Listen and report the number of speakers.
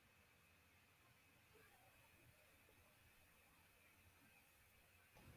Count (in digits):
0